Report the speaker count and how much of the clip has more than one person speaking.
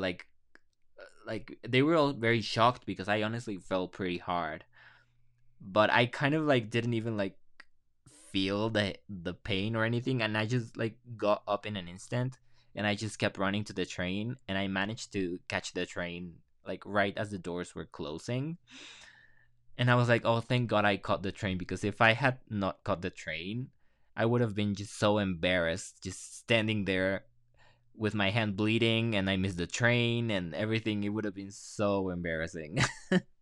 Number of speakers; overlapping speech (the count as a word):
one, no overlap